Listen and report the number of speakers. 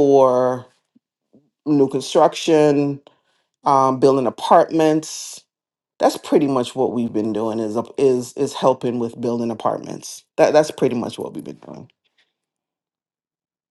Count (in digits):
1